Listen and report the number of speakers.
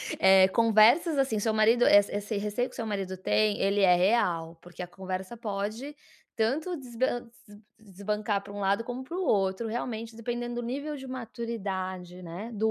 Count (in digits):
1